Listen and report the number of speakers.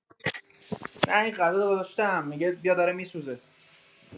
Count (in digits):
1